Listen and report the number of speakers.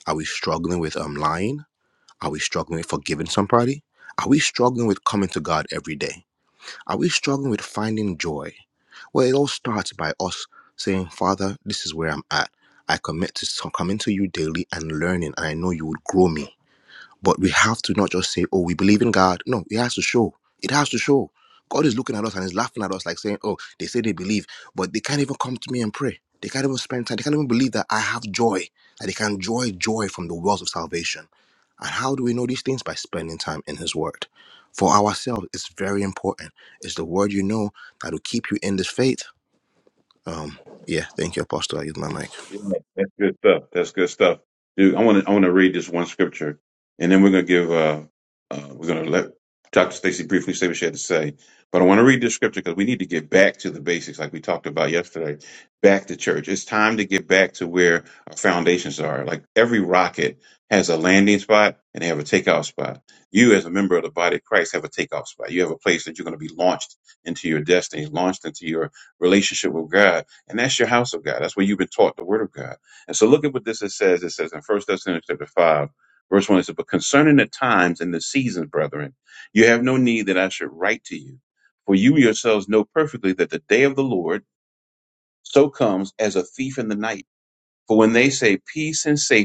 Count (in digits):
2